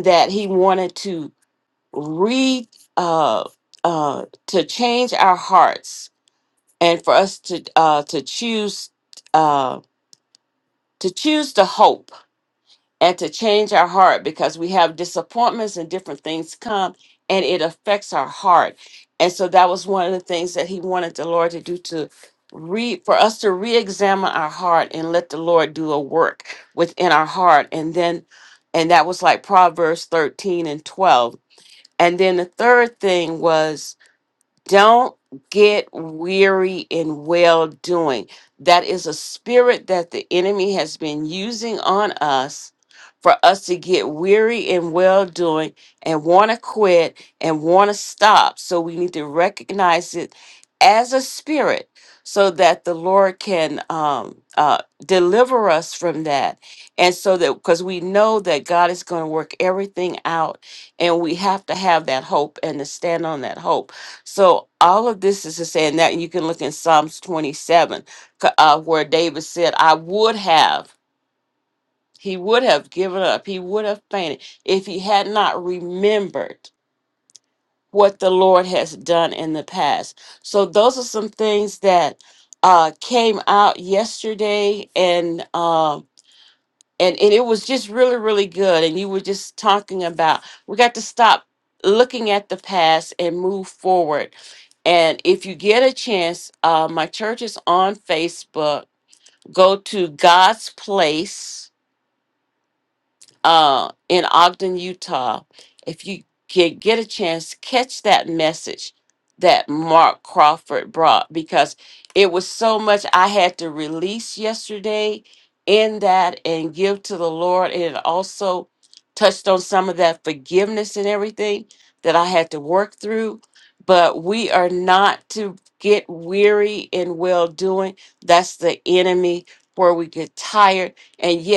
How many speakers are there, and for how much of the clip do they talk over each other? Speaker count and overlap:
1, no overlap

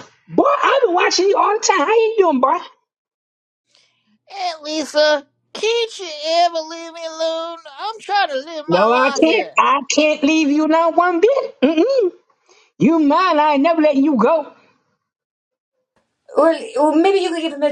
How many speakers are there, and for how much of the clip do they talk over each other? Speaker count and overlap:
3, about 5%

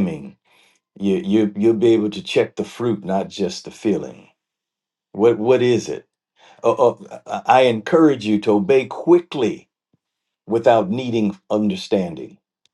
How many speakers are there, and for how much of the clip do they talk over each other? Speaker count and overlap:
1, no overlap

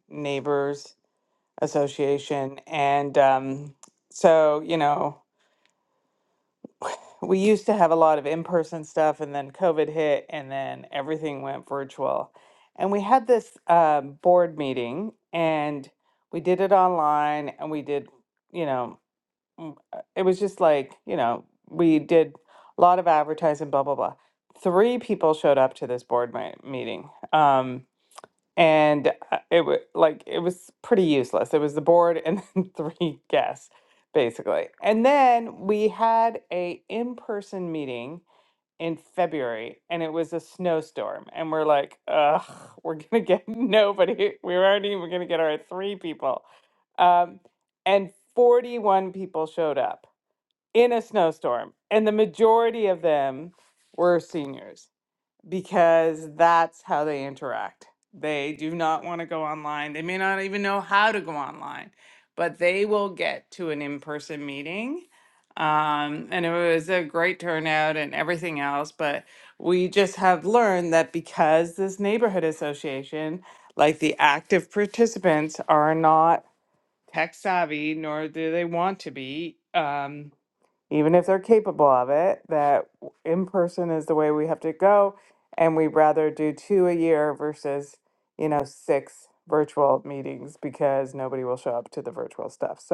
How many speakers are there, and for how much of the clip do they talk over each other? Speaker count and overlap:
1, no overlap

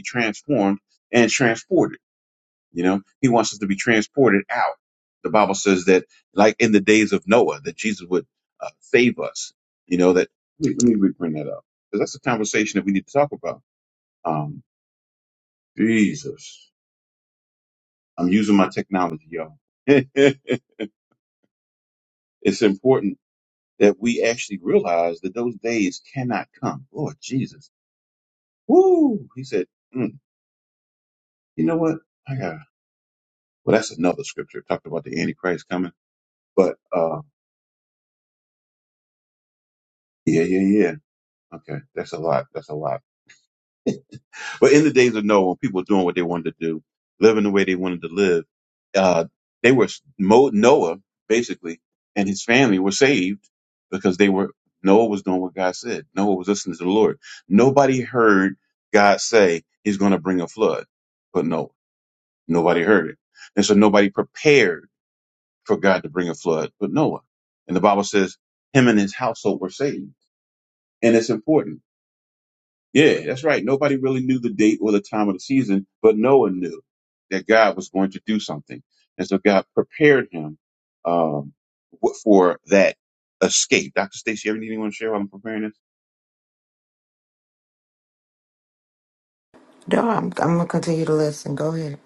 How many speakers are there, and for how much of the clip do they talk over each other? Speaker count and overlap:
2, no overlap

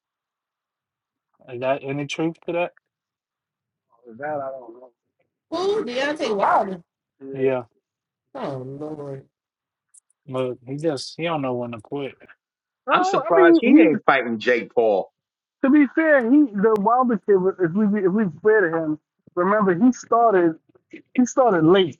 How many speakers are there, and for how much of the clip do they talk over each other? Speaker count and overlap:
4, about 6%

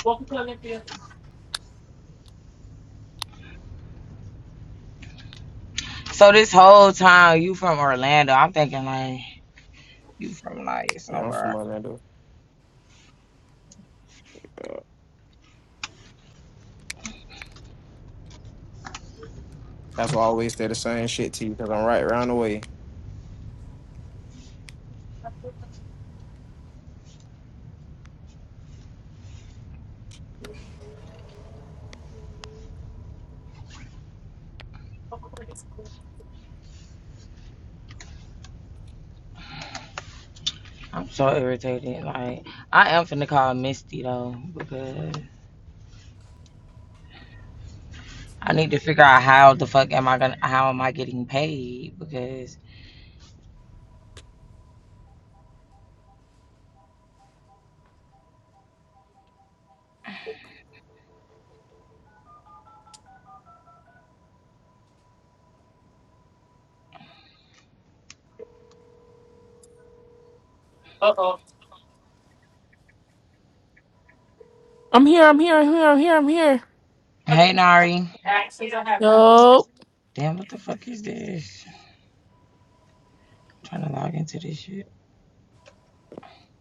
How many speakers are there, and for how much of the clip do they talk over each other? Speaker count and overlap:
4, about 1%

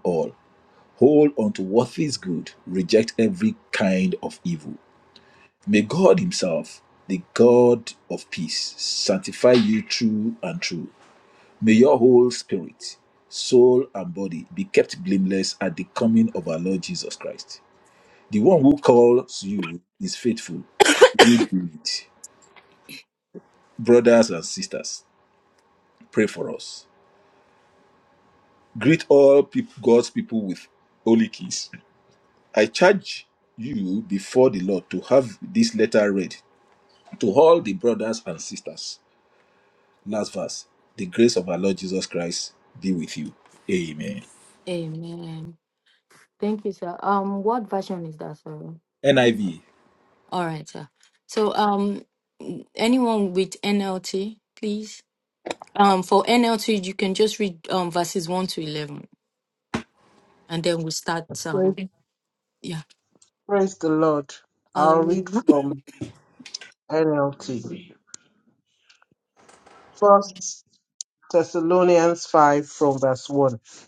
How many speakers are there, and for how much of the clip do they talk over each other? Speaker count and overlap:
3, about 1%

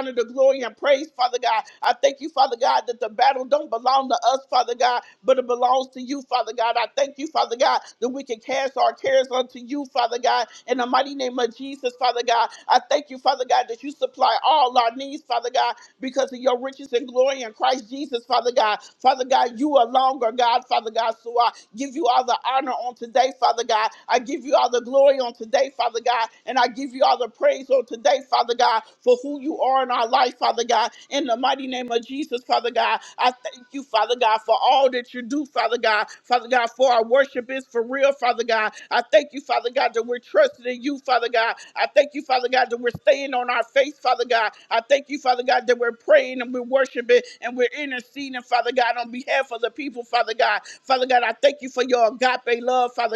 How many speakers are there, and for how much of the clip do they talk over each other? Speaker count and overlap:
1, no overlap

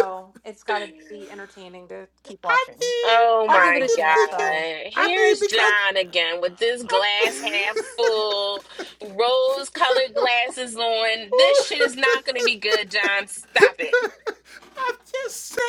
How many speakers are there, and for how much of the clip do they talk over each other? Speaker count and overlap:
3, about 26%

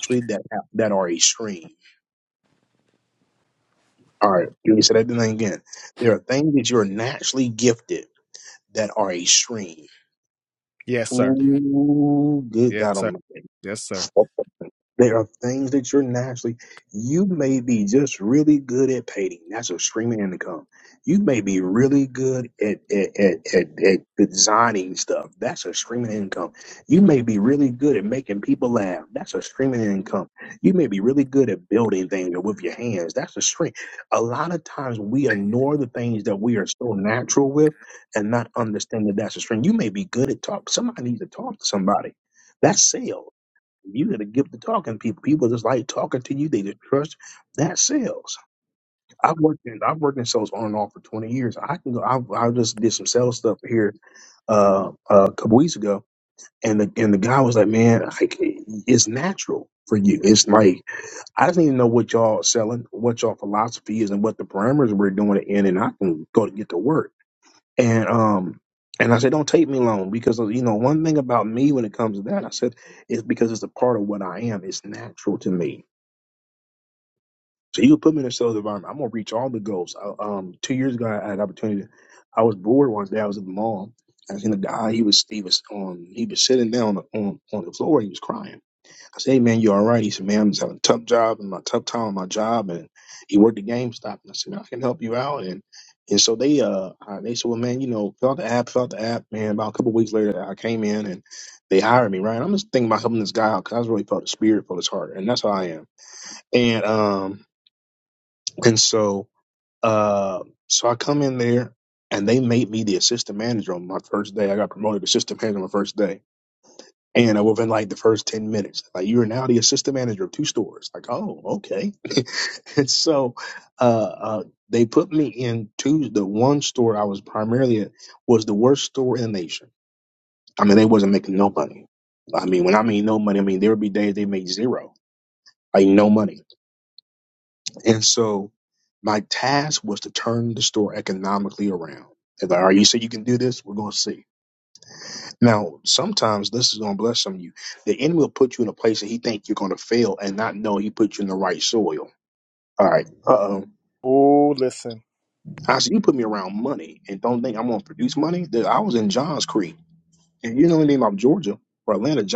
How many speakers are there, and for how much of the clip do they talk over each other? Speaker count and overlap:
2, under 1%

